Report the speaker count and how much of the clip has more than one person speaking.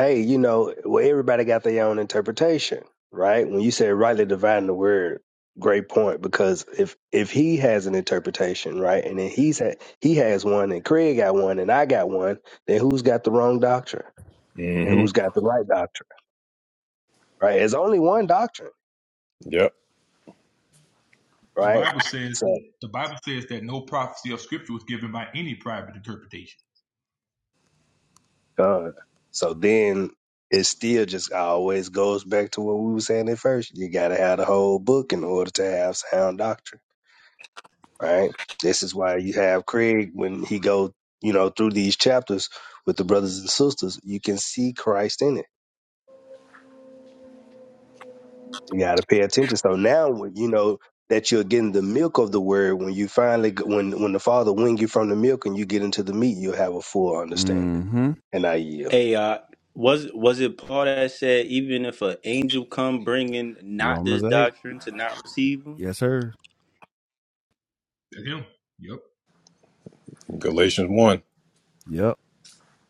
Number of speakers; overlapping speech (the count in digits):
5, about 3%